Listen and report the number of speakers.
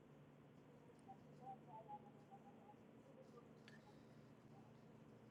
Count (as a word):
zero